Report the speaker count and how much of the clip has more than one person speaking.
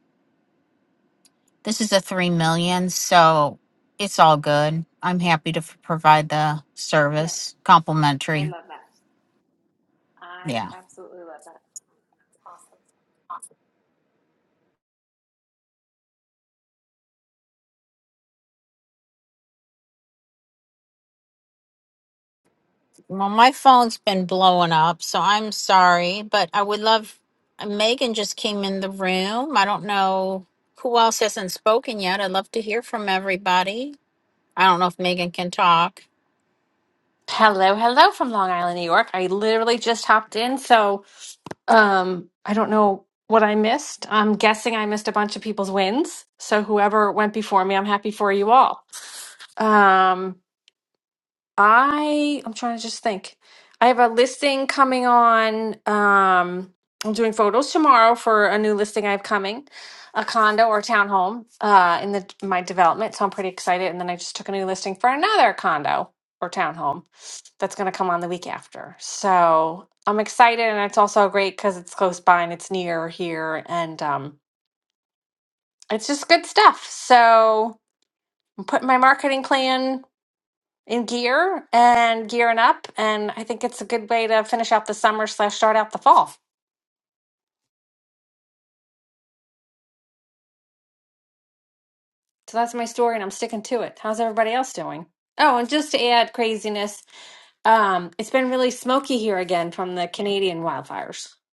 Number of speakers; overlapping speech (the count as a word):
three, under 1%